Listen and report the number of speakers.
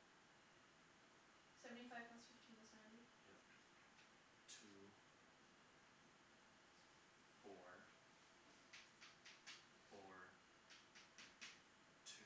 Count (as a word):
two